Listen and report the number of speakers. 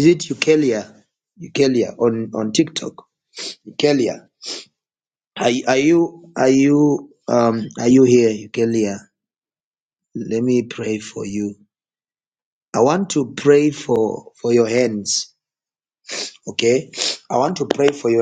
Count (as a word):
one